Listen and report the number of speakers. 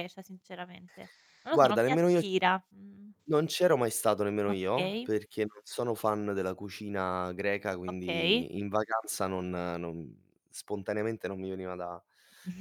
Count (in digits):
2